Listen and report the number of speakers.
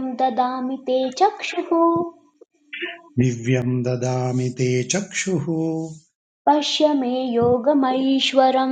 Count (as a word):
two